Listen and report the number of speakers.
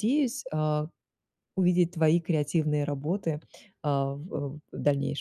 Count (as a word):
one